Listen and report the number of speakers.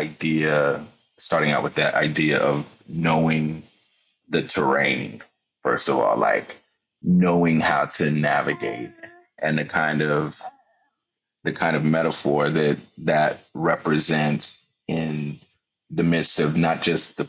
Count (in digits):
1